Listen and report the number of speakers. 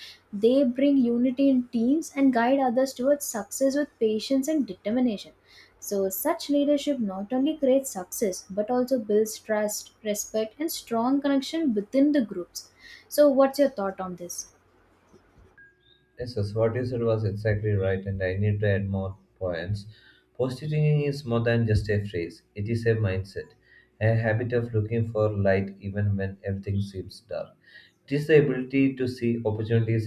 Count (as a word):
two